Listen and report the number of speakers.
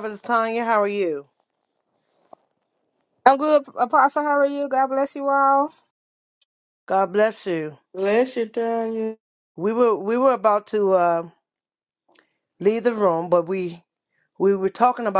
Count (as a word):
three